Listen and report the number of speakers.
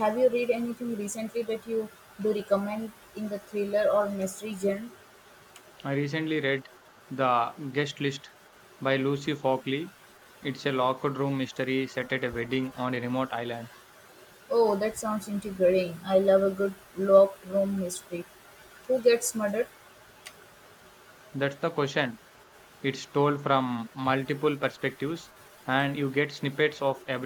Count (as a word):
two